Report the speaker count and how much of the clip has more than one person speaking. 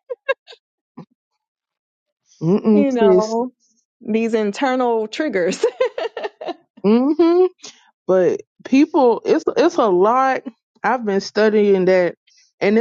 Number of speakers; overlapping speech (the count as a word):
two, about 4%